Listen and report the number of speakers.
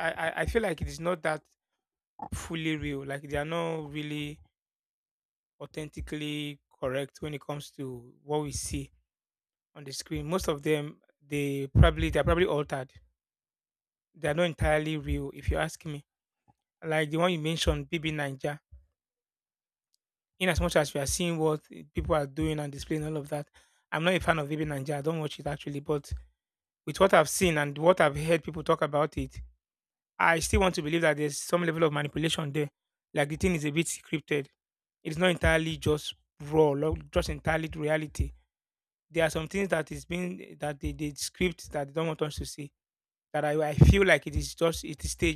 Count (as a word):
one